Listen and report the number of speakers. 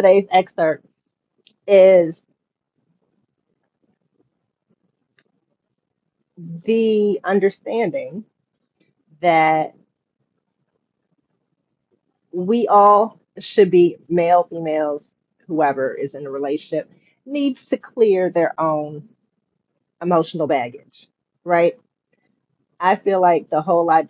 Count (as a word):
one